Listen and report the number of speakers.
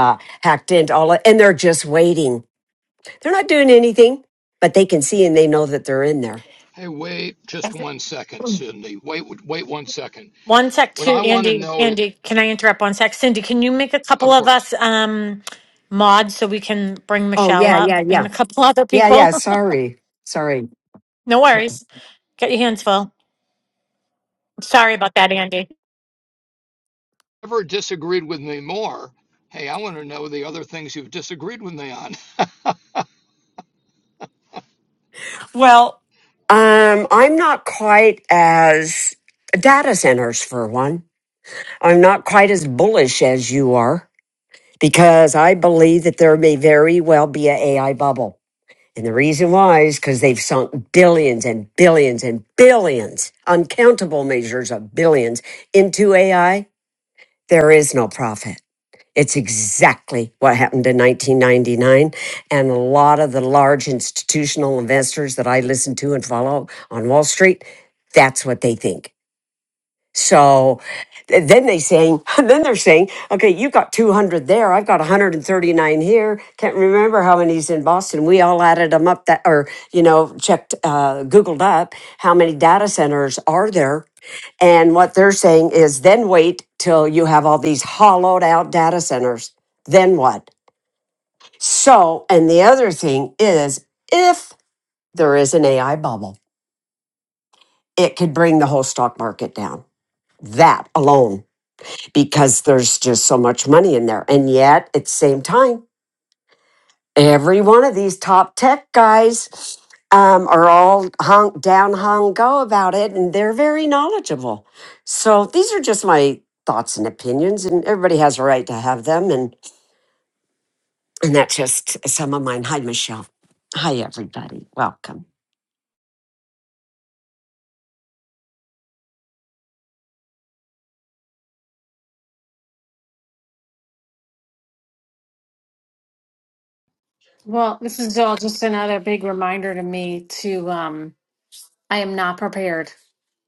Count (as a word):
four